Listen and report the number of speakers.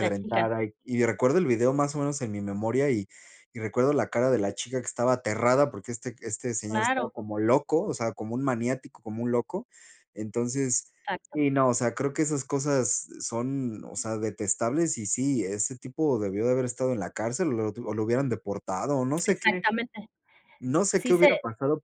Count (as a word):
two